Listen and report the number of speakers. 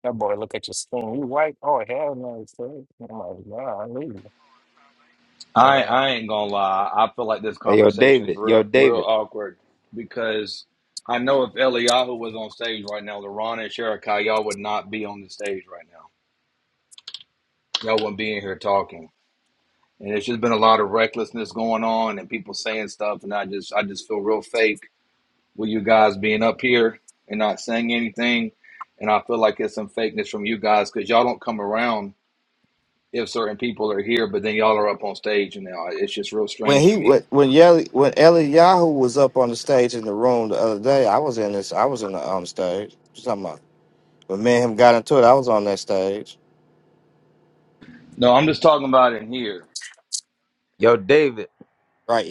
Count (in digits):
4